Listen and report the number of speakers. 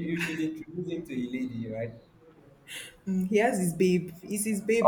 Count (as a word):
two